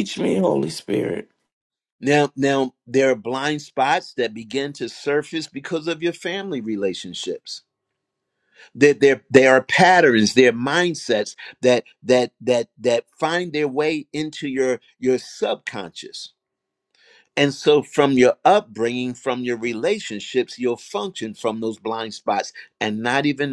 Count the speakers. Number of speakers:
2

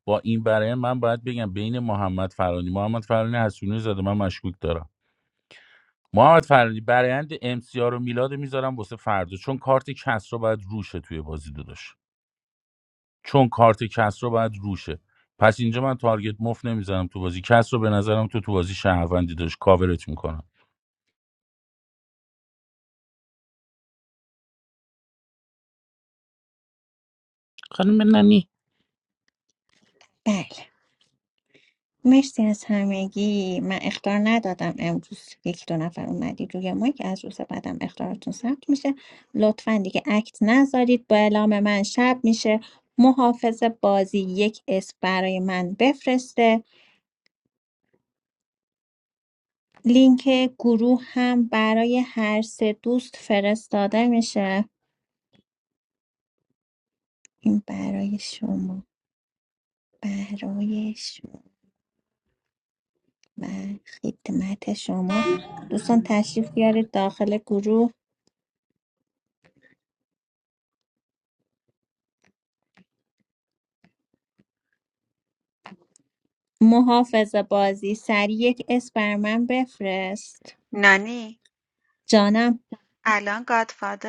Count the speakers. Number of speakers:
3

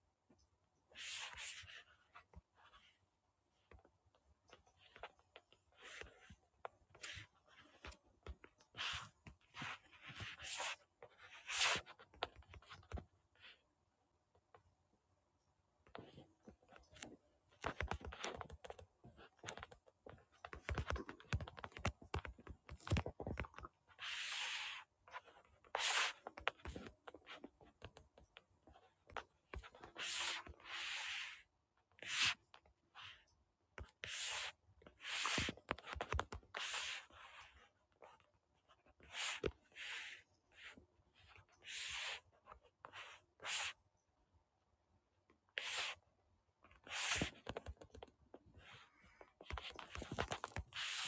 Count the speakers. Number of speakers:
0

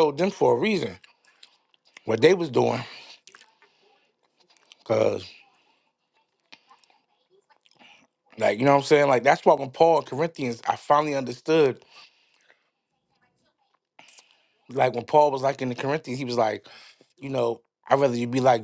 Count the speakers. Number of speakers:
1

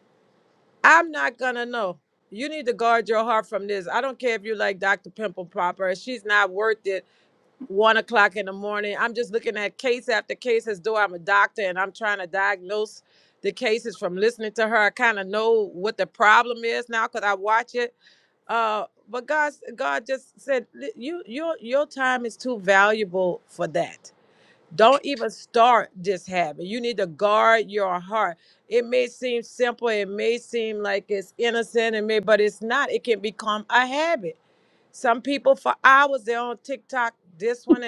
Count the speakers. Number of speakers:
1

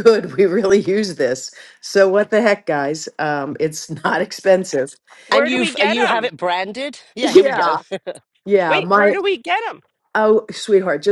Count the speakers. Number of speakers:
3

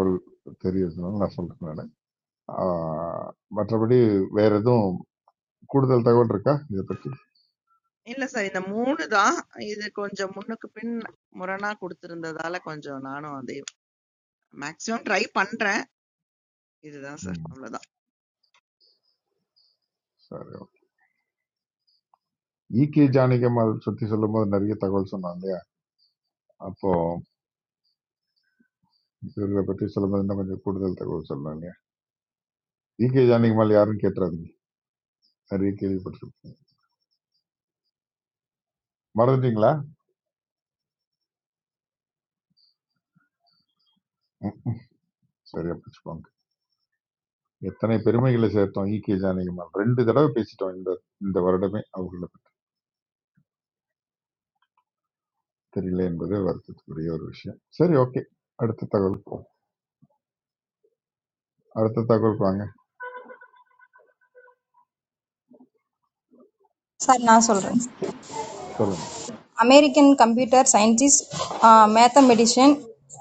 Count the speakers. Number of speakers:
3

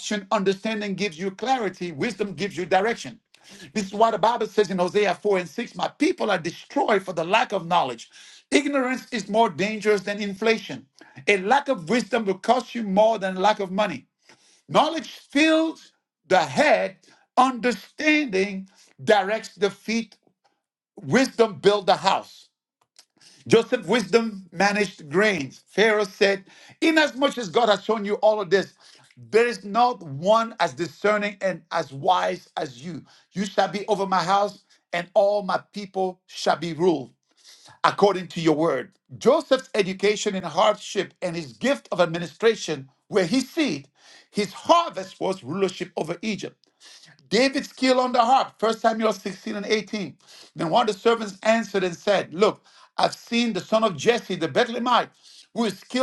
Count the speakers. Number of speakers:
1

